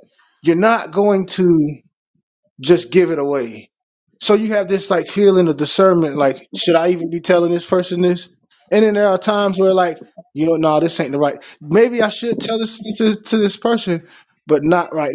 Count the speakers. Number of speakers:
one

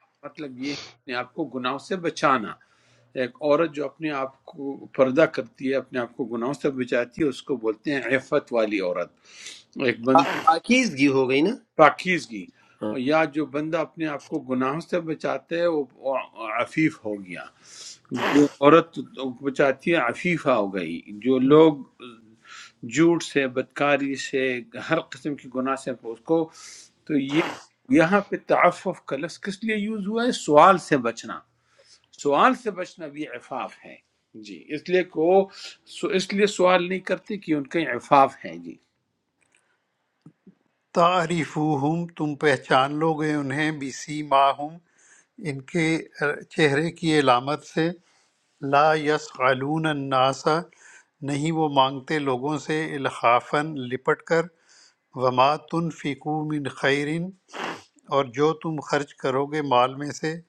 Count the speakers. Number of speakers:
three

